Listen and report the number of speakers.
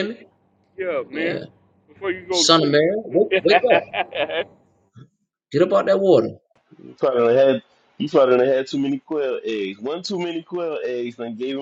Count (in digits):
3